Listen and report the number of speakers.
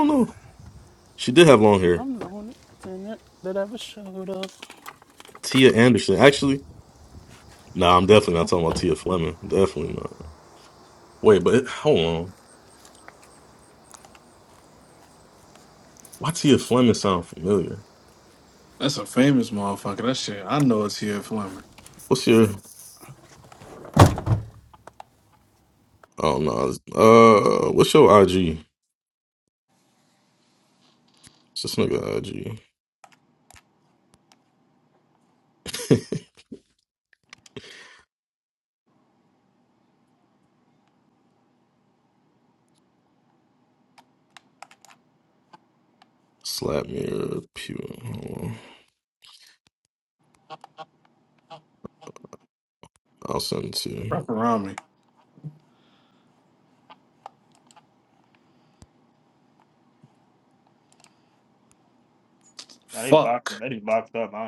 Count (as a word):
four